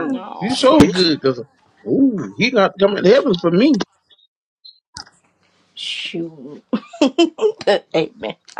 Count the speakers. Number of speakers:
two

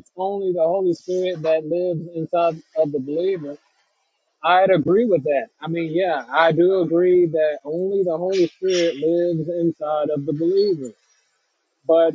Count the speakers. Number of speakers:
one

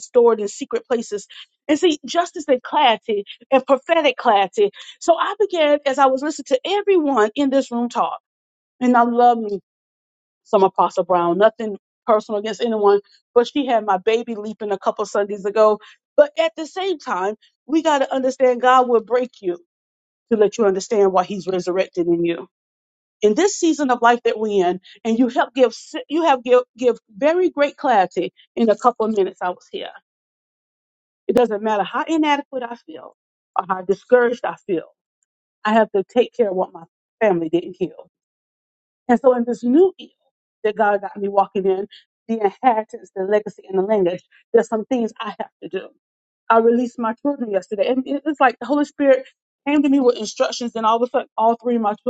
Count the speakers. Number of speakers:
one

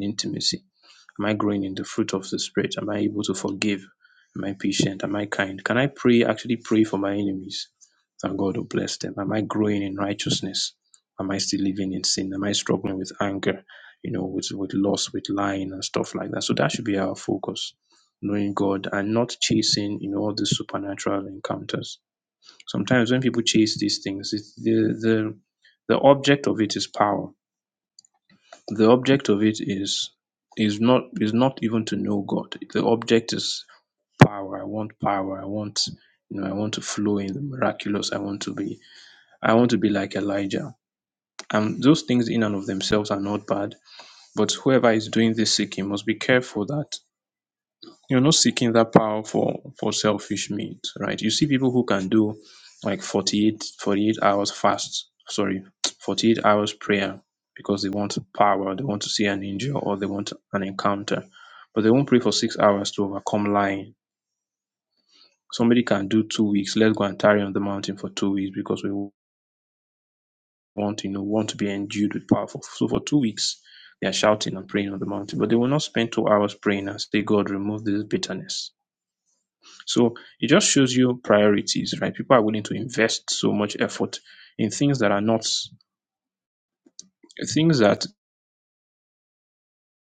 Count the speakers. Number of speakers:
one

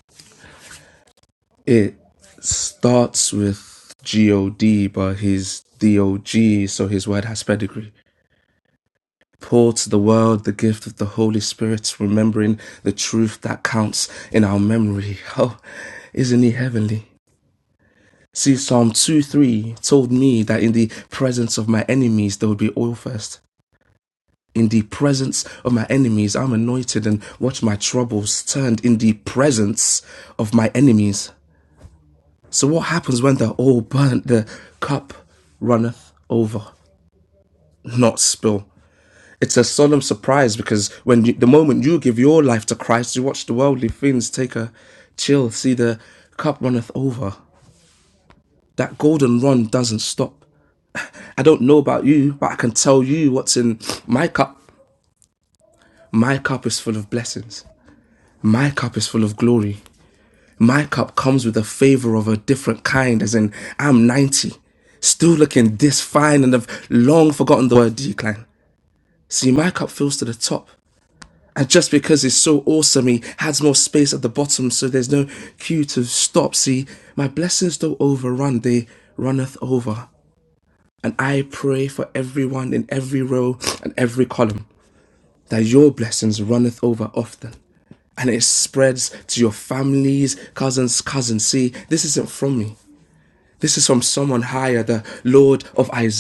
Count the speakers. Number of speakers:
one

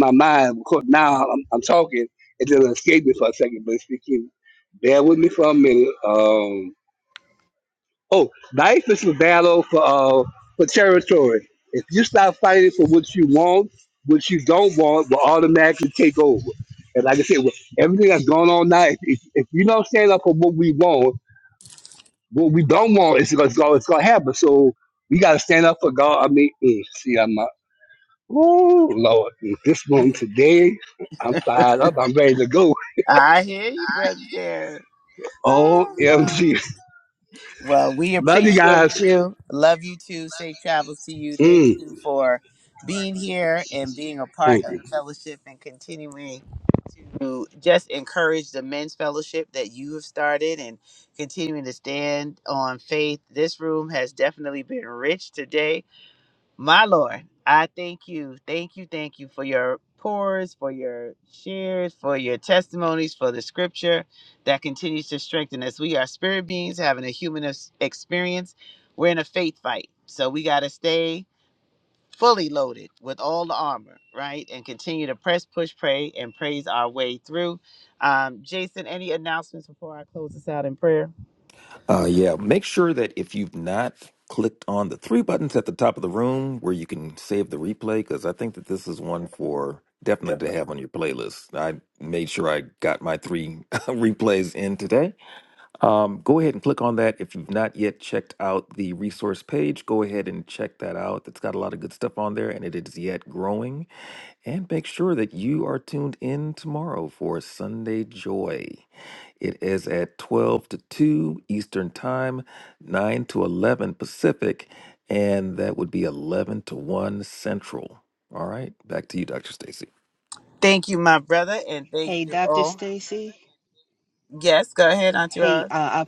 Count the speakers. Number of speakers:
four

